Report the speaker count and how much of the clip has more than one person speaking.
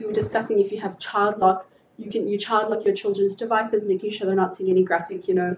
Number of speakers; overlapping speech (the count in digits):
1, no overlap